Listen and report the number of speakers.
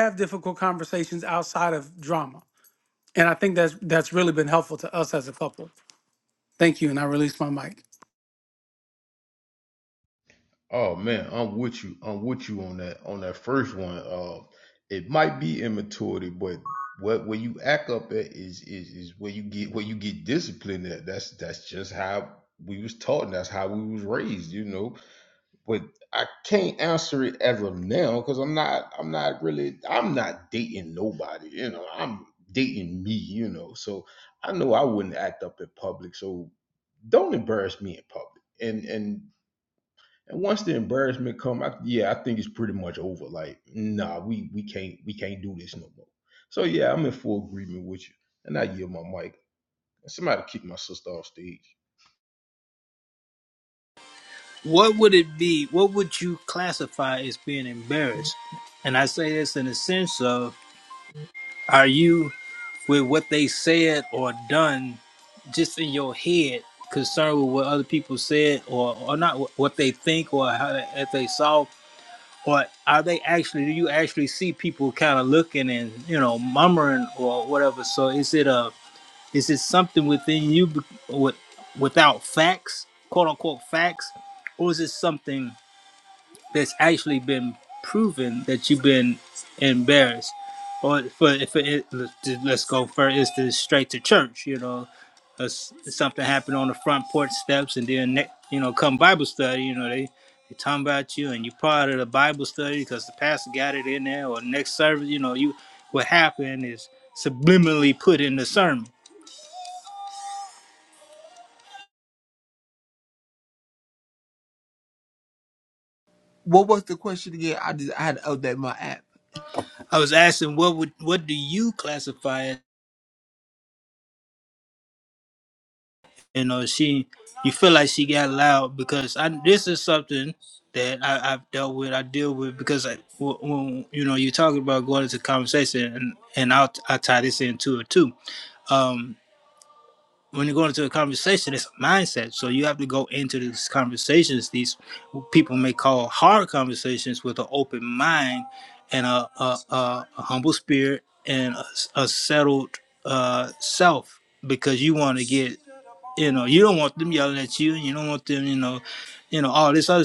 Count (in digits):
4